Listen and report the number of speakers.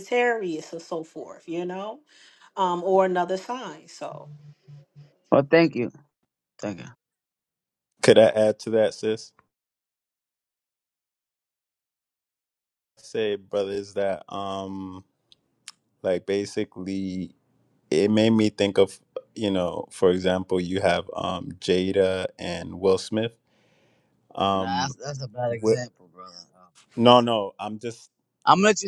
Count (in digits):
3